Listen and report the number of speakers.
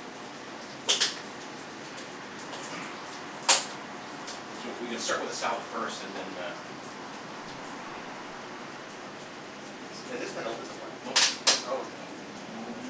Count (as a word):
two